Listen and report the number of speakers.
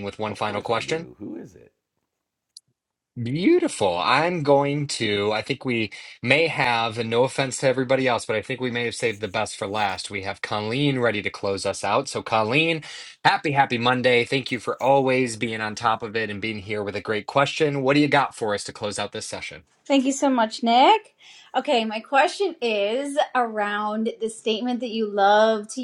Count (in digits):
3